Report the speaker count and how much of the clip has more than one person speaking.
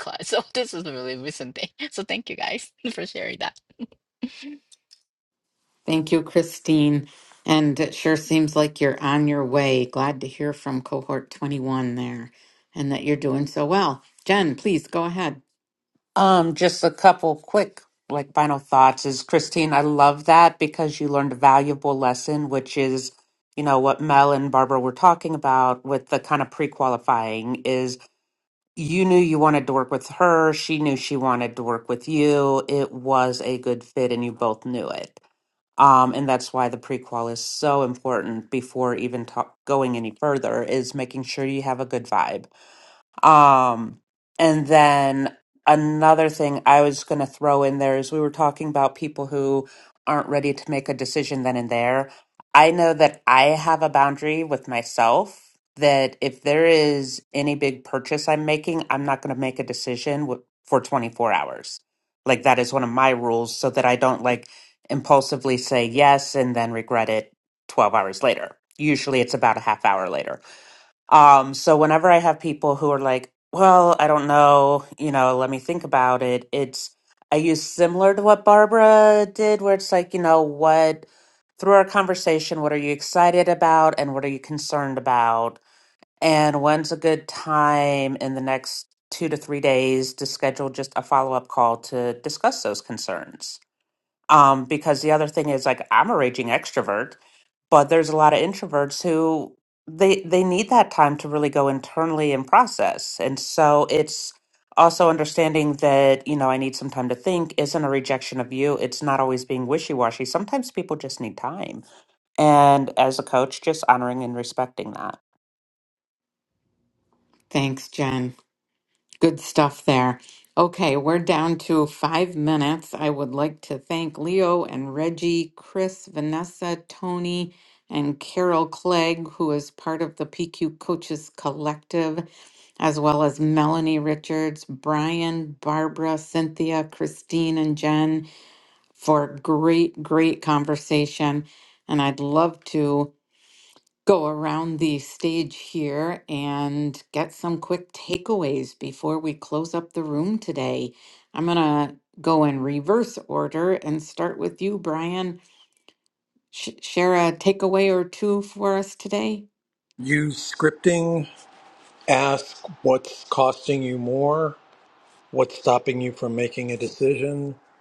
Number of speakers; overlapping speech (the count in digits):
4, no overlap